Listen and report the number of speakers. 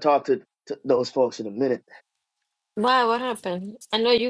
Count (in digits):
2